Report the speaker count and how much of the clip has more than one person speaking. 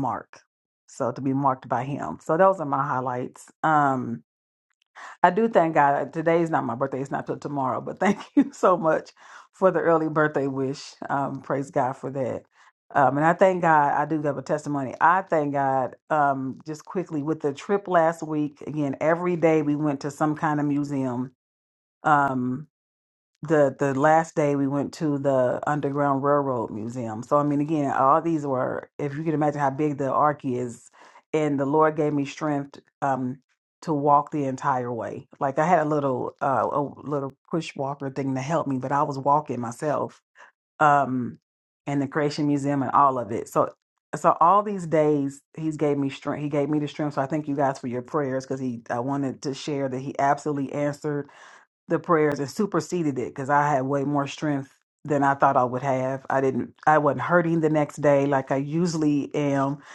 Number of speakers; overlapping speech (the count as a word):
one, no overlap